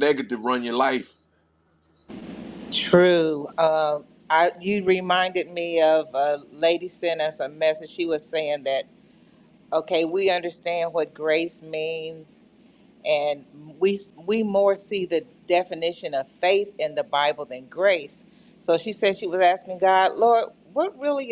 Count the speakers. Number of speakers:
two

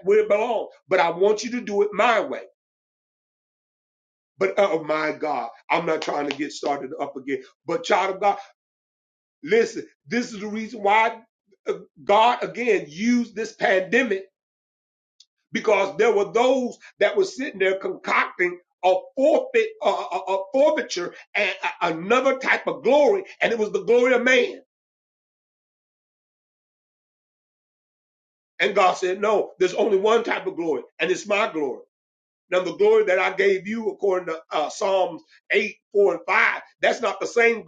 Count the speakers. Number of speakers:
one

